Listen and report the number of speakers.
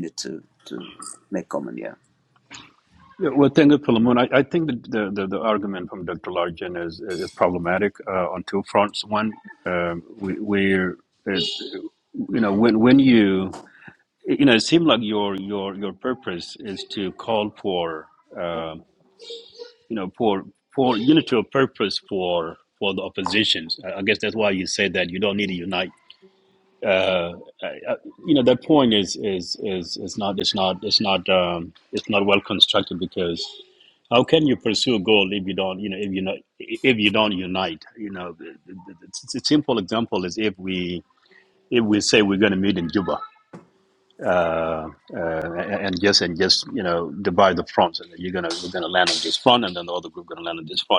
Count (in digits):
2